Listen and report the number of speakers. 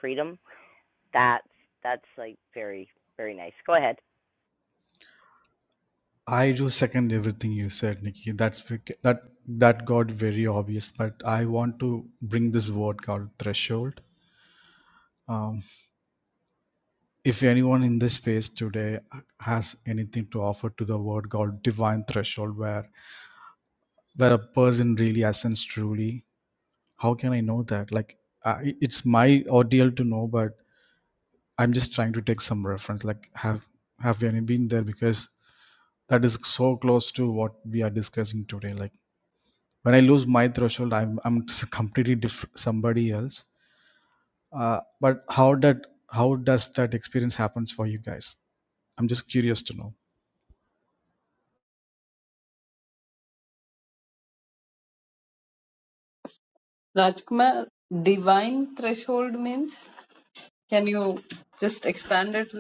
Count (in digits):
3